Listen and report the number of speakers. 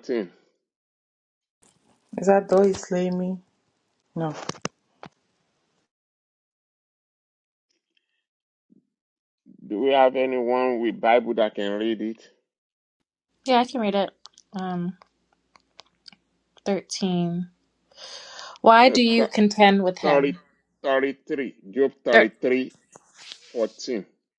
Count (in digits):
3